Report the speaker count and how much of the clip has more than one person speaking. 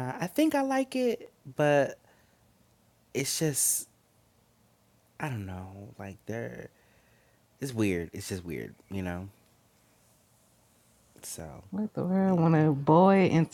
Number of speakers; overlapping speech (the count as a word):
two, about 3%